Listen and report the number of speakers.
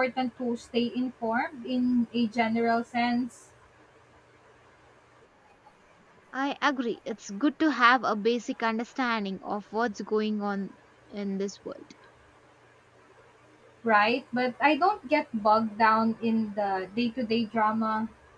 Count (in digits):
2